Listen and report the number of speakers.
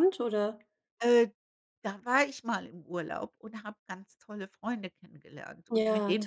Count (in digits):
2